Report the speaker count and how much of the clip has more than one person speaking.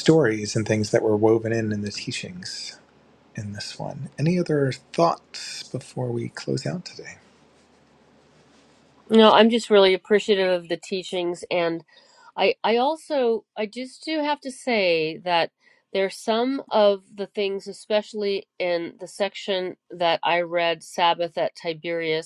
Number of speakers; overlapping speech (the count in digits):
2, no overlap